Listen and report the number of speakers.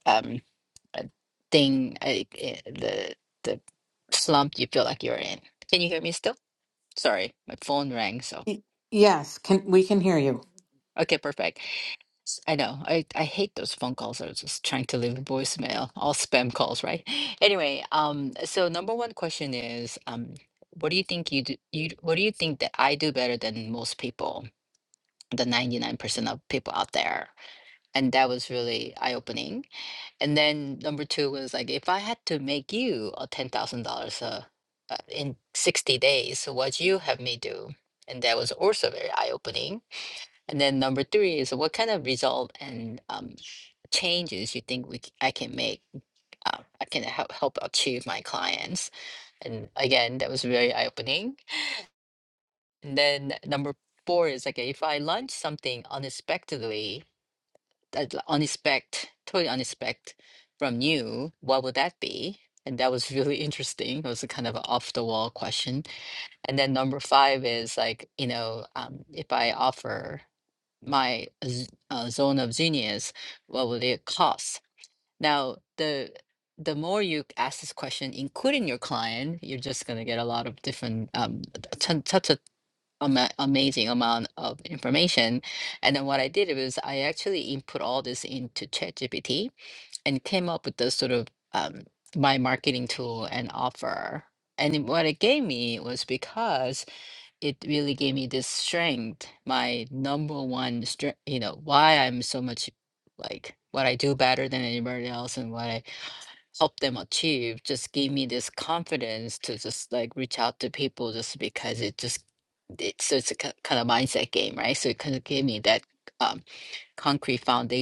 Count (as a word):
two